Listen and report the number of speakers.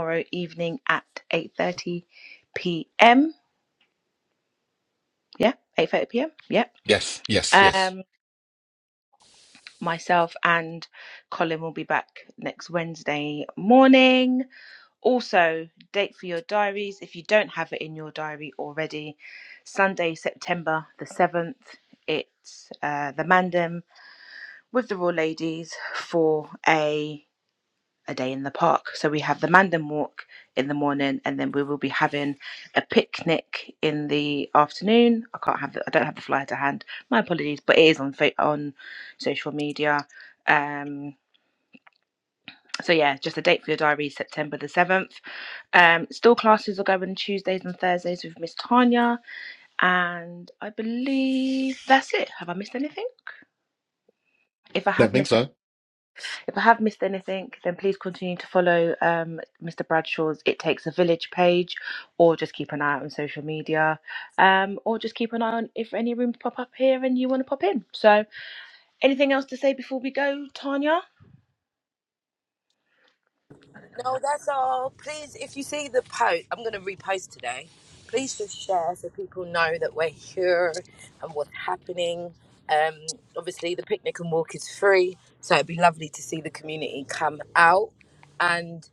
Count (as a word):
three